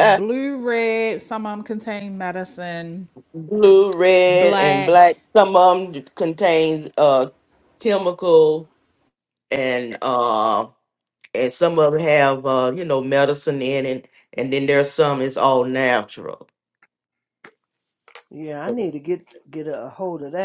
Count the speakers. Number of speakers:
three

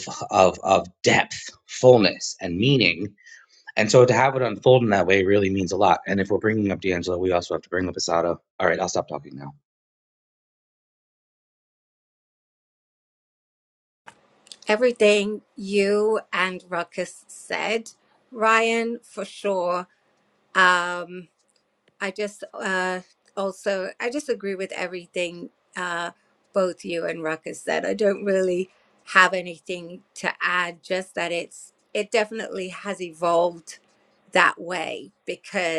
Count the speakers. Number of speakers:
two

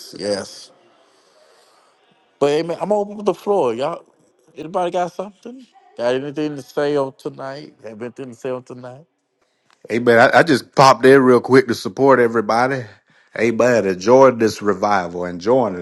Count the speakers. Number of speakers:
two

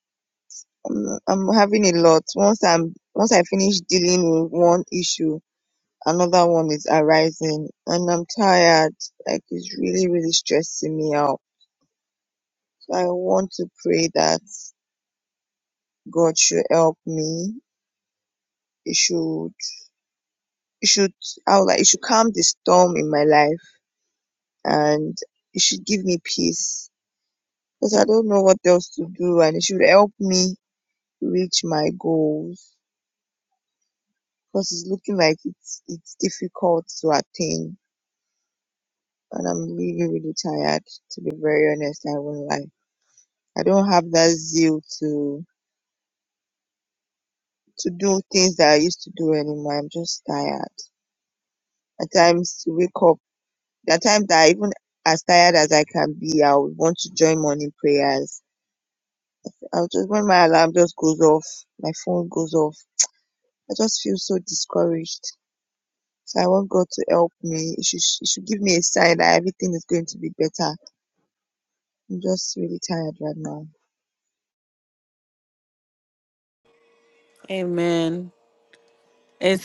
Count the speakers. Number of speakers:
two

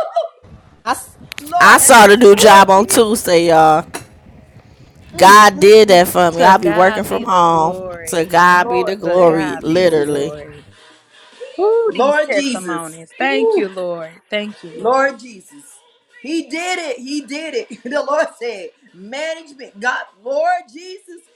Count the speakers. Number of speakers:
three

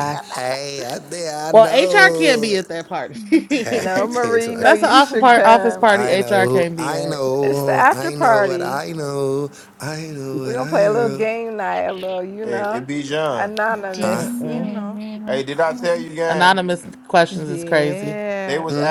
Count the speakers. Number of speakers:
four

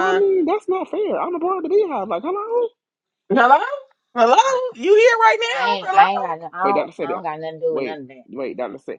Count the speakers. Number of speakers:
three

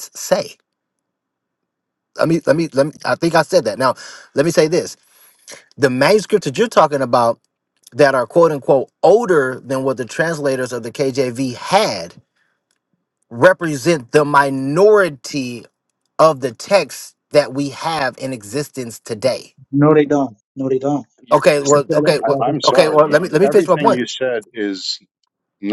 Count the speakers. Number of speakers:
three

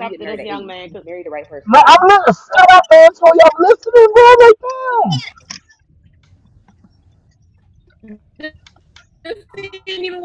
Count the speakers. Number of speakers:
three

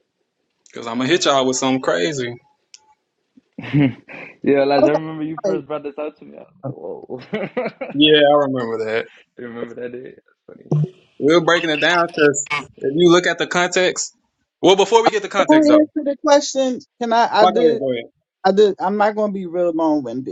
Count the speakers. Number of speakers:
three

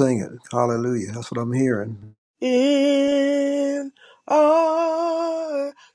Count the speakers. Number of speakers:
two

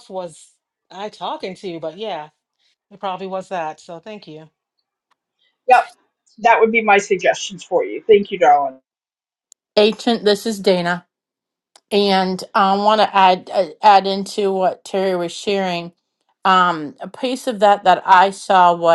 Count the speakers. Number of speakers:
three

